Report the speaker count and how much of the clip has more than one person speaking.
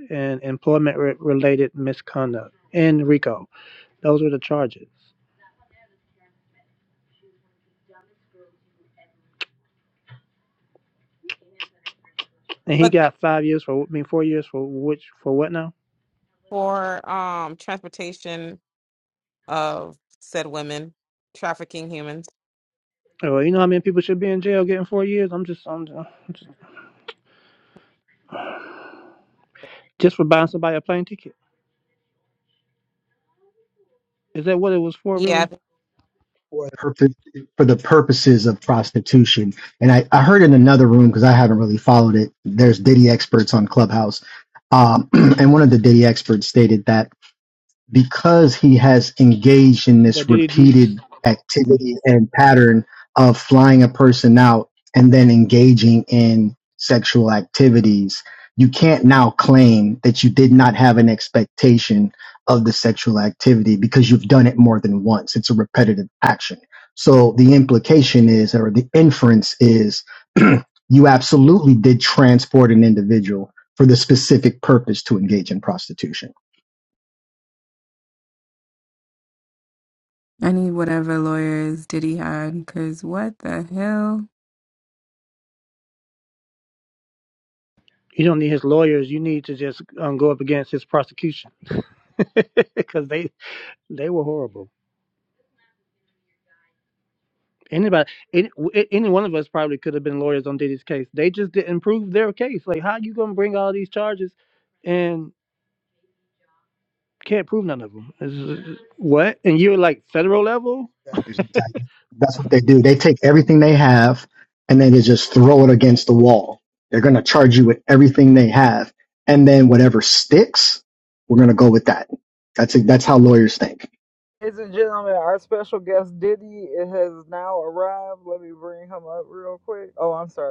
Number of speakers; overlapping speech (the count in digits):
5, about 1%